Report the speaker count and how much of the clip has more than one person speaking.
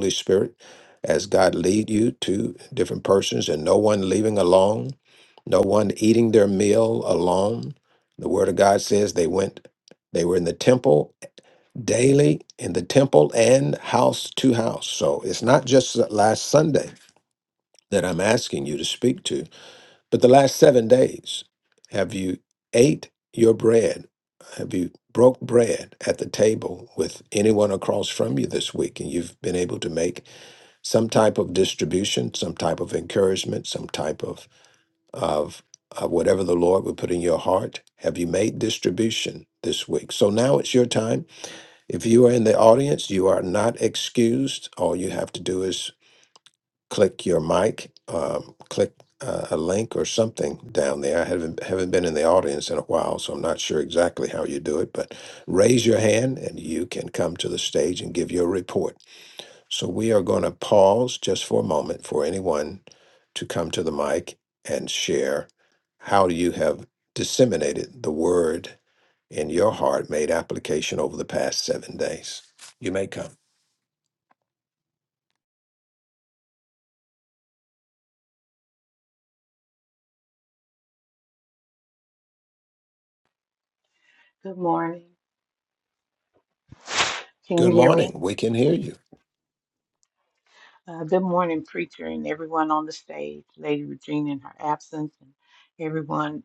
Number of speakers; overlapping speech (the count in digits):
2, about 1%